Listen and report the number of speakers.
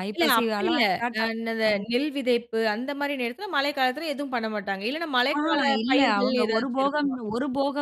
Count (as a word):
two